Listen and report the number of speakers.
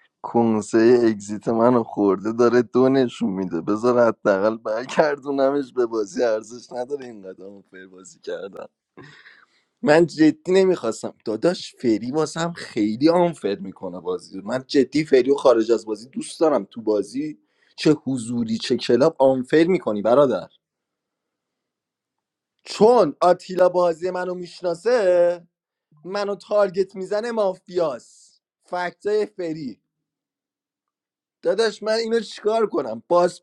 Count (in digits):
1